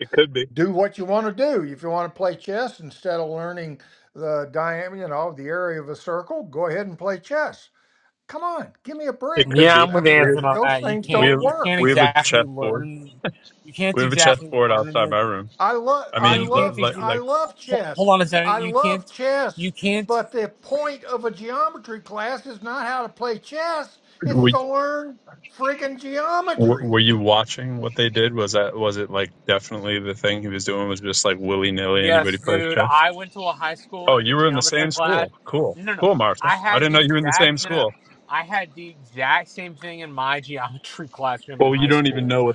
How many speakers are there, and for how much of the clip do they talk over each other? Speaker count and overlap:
3, about 28%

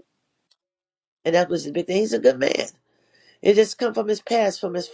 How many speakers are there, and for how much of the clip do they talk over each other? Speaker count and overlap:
1, no overlap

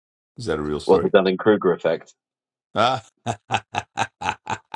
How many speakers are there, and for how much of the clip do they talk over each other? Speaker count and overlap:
2, about 5%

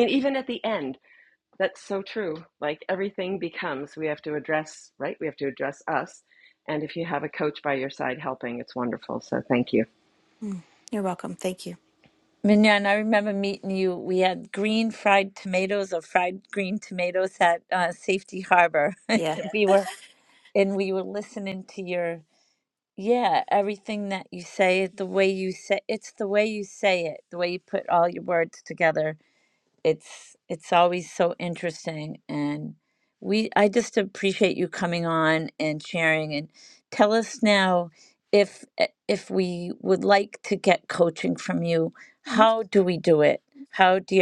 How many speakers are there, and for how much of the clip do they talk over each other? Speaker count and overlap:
3, about 1%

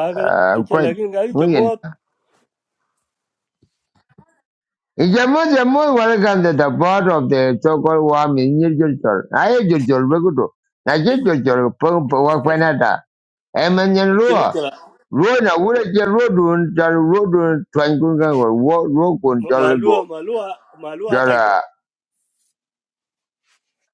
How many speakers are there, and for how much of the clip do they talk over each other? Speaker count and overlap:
2, about 12%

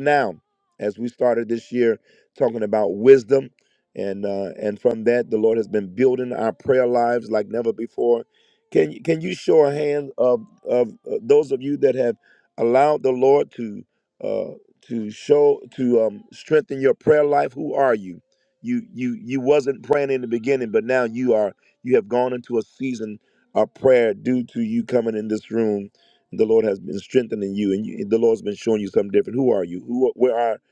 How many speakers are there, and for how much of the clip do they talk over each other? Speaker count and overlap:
1, no overlap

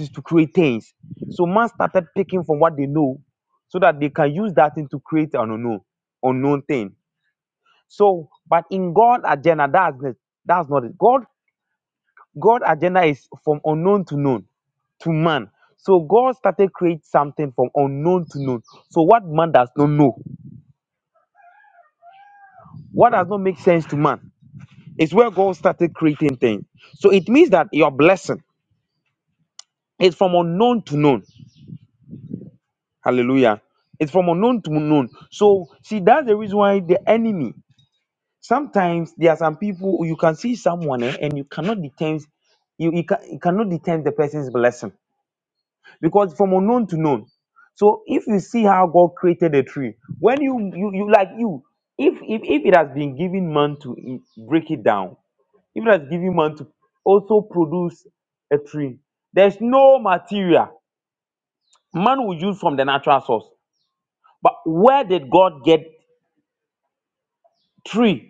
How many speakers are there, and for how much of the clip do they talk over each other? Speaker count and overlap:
1, no overlap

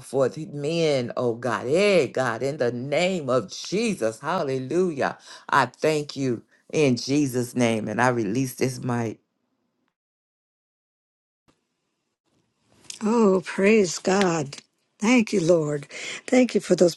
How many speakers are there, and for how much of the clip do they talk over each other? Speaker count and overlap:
2, no overlap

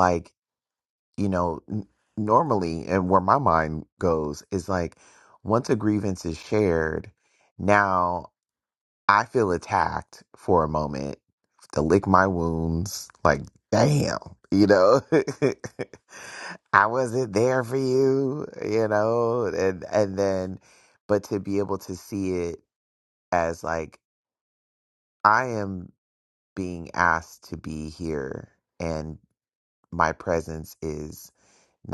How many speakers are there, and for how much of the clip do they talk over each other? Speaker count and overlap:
1, no overlap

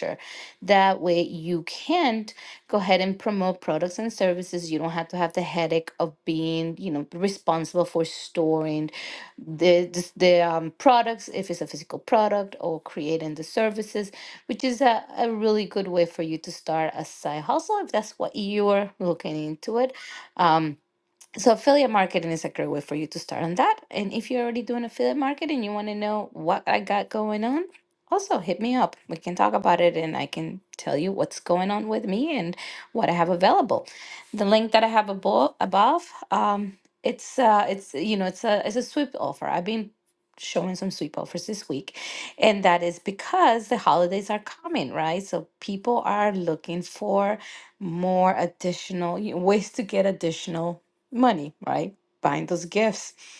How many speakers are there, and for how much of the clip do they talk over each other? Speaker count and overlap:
1, no overlap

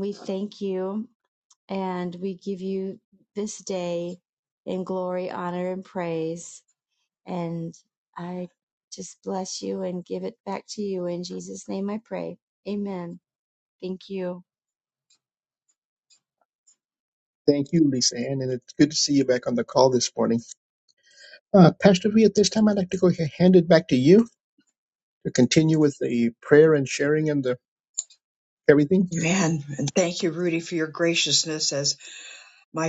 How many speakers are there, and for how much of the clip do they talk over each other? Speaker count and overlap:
3, no overlap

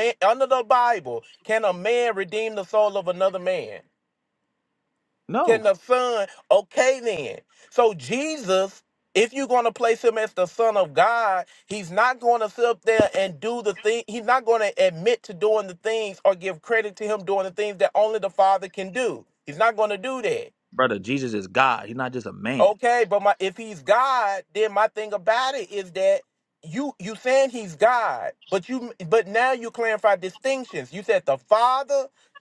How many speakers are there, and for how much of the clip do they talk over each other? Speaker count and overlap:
2, about 1%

